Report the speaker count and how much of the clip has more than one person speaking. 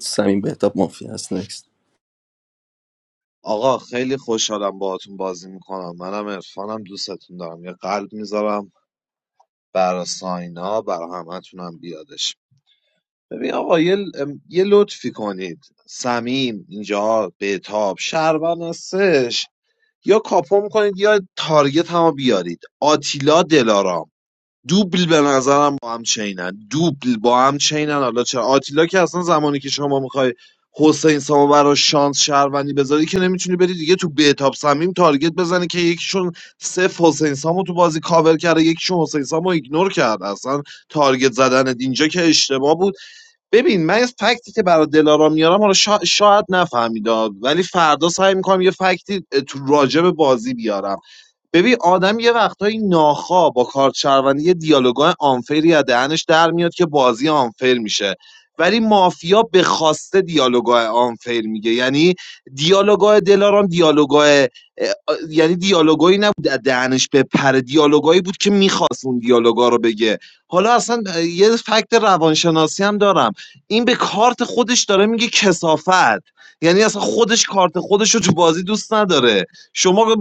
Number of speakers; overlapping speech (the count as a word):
two, no overlap